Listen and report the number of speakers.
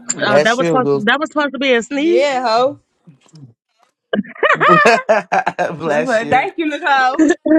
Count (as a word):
three